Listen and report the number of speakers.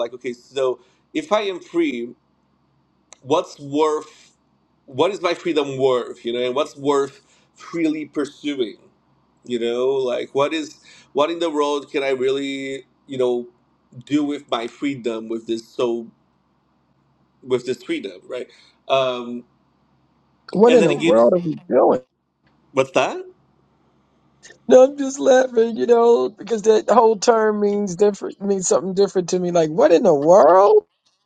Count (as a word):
two